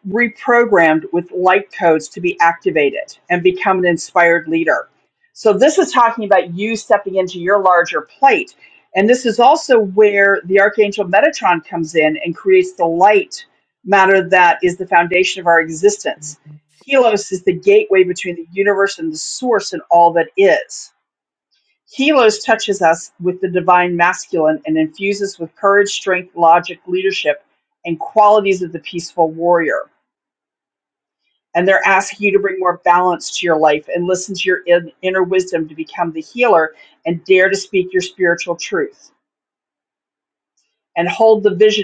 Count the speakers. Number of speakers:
one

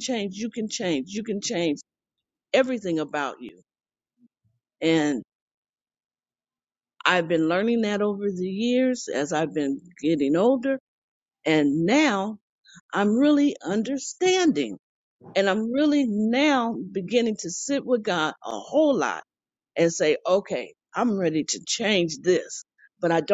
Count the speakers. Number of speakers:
one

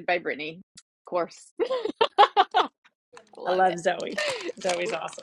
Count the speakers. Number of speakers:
two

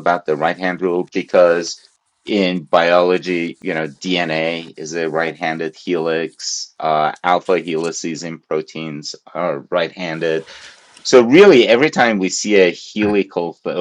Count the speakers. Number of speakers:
one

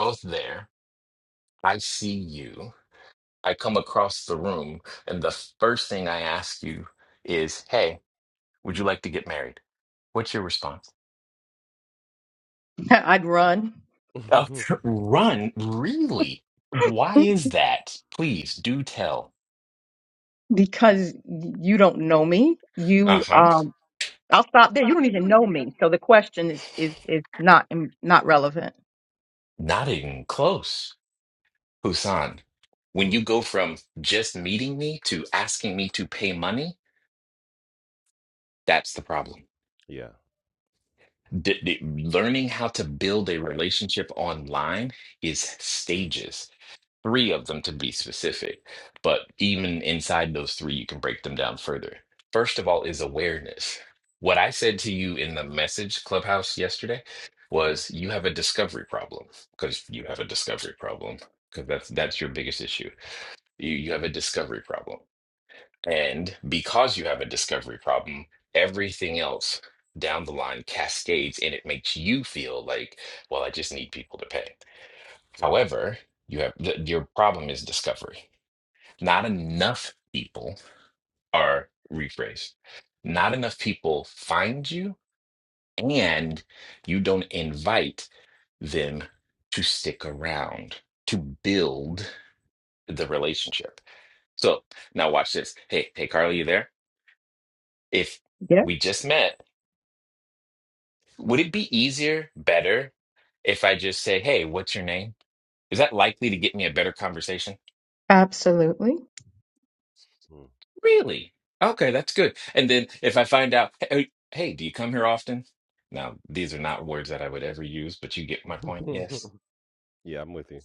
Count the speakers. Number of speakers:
three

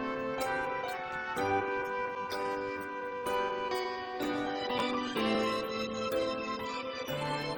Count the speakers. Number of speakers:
zero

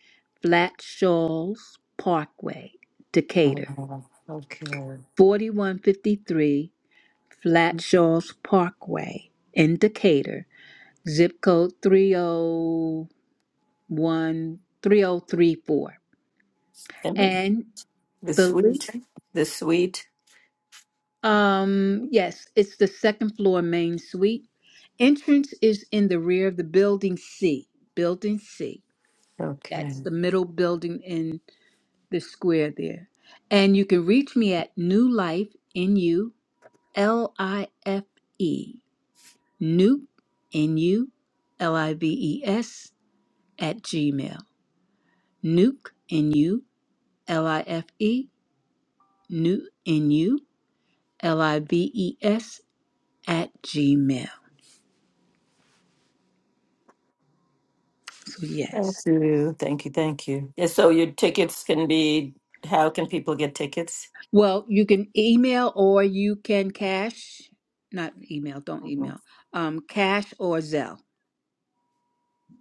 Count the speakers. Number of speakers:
two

